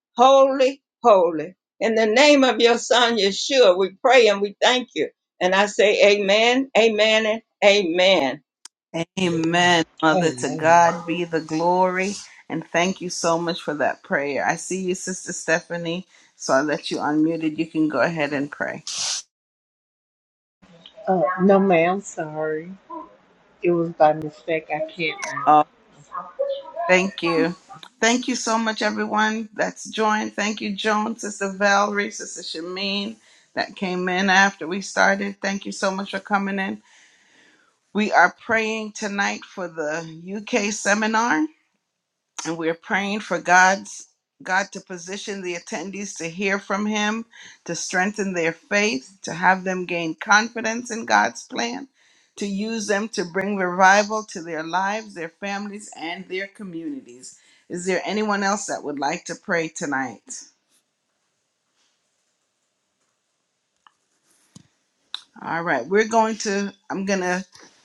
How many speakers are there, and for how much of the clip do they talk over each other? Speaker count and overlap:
three, about 1%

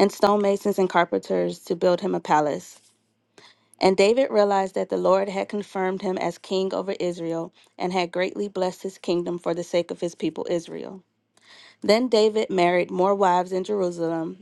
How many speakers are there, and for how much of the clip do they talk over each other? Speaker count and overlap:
one, no overlap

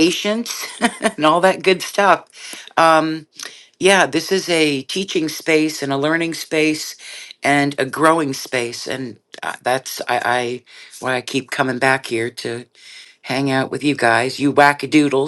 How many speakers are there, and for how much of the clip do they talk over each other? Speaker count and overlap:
one, no overlap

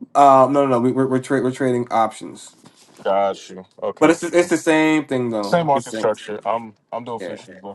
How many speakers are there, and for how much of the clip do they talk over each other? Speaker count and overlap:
two, about 13%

